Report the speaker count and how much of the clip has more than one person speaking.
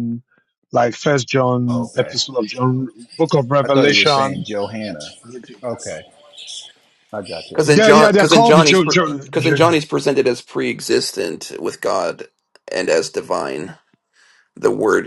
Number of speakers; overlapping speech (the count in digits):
3, about 21%